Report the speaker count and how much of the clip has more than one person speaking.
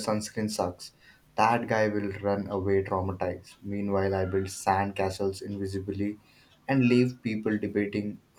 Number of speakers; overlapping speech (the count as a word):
one, no overlap